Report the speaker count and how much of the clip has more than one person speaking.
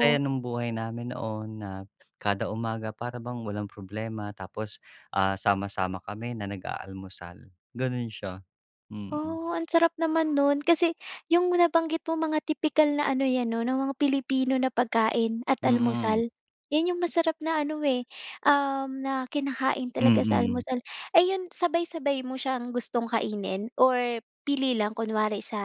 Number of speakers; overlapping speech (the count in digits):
2, about 7%